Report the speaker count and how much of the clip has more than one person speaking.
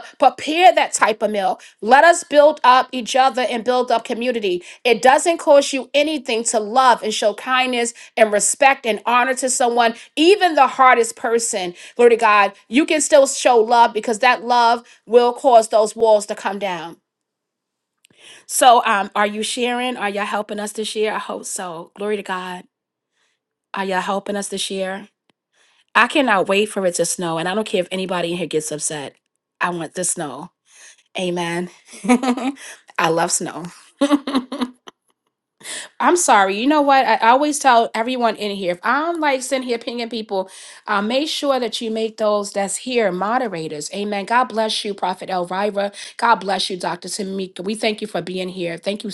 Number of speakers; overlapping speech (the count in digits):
1, no overlap